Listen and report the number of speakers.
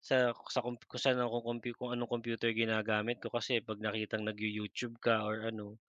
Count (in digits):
1